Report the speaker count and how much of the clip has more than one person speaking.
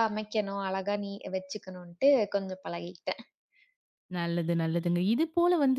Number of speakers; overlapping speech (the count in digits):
2, no overlap